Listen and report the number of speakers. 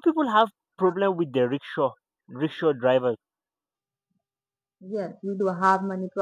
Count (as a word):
two